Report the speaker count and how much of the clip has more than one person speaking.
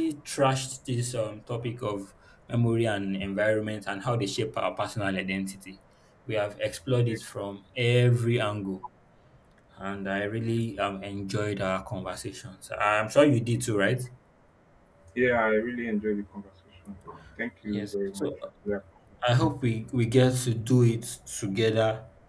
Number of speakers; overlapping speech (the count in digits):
2, about 4%